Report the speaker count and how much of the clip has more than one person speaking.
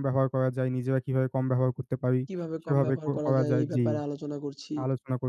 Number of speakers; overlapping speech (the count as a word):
two, about 23%